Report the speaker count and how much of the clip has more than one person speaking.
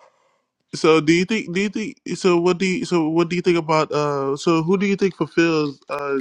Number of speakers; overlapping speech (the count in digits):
1, no overlap